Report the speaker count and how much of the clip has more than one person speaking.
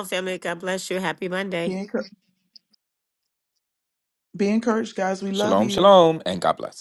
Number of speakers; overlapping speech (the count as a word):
three, about 9%